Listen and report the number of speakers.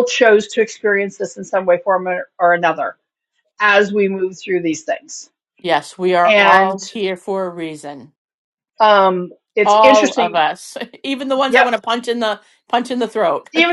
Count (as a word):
two